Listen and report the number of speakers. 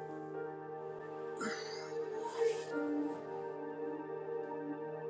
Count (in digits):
0